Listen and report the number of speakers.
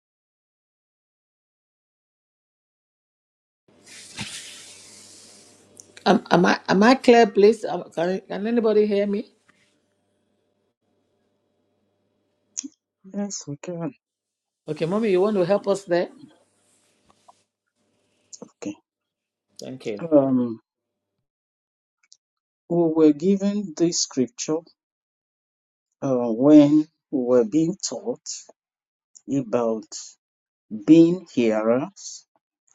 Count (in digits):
2